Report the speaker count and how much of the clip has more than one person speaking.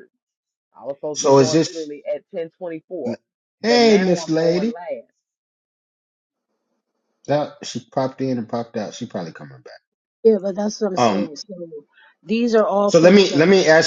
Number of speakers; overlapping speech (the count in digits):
3, about 17%